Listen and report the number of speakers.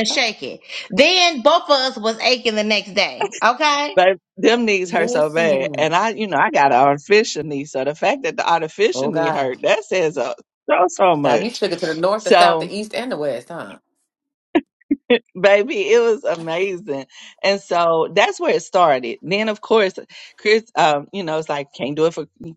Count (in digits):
3